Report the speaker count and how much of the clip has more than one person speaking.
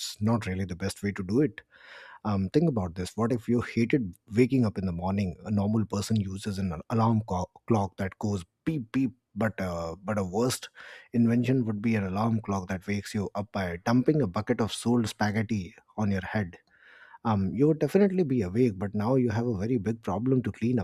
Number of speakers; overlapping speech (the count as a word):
one, no overlap